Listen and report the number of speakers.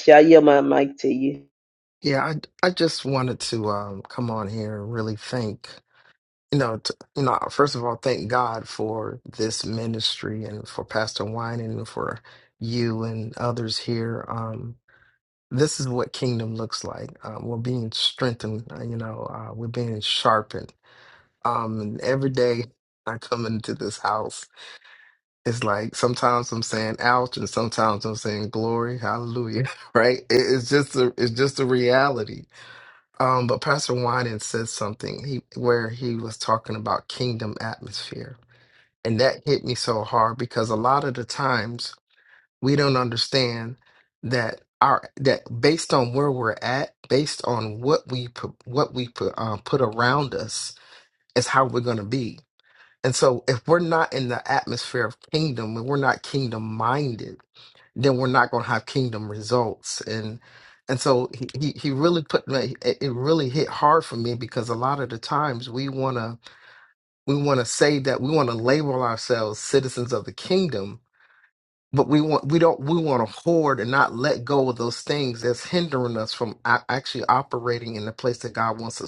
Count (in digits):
2